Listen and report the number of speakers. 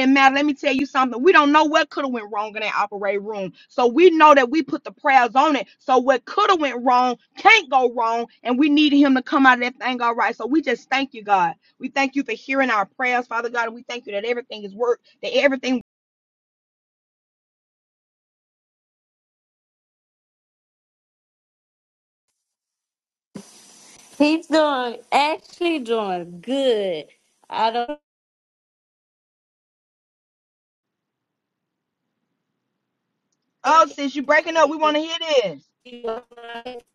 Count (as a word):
two